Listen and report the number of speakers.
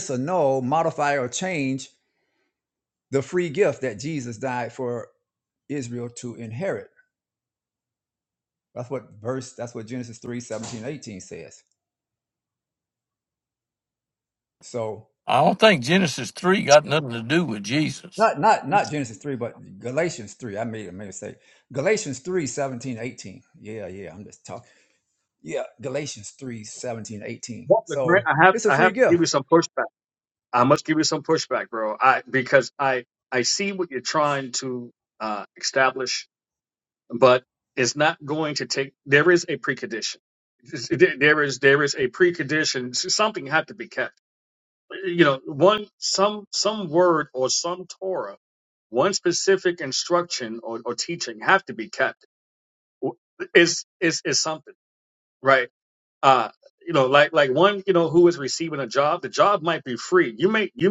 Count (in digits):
3